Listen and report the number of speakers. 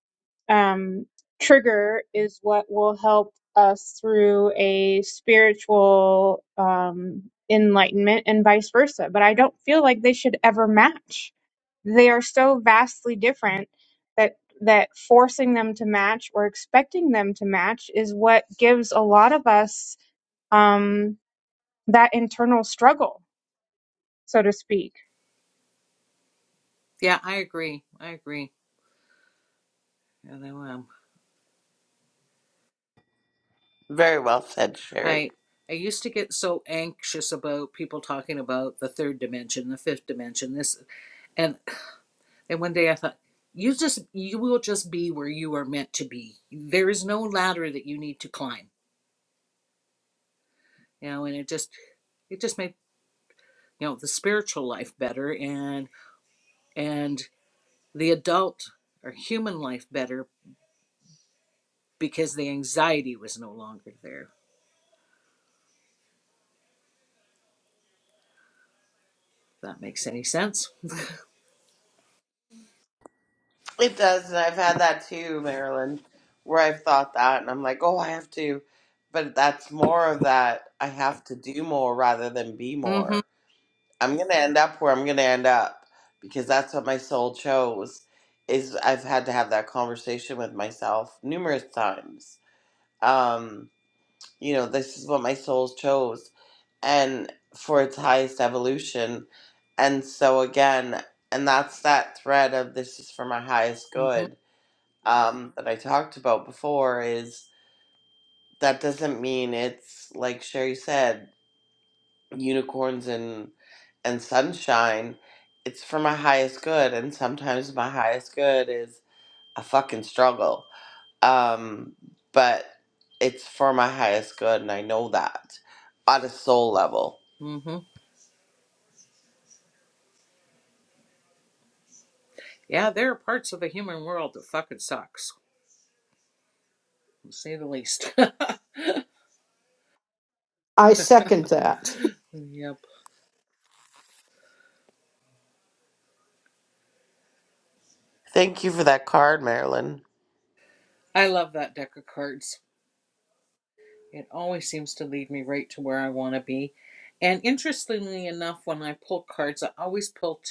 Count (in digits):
4